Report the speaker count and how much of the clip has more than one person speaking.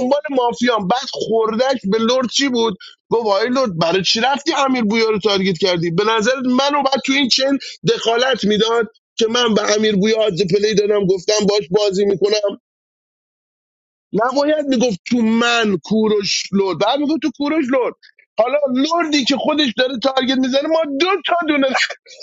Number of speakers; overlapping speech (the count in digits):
1, no overlap